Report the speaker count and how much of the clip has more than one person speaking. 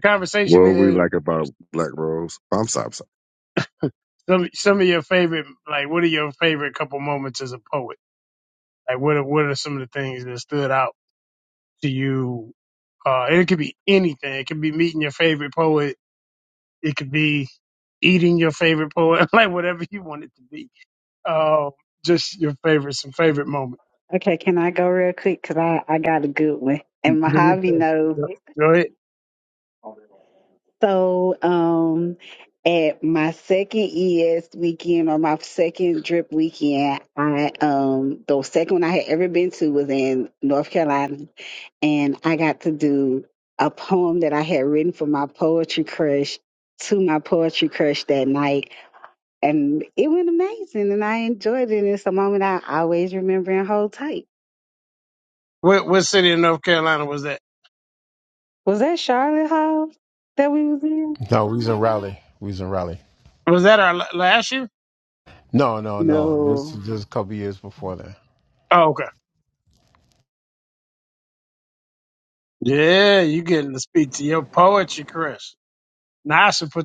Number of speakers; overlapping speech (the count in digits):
4, about 3%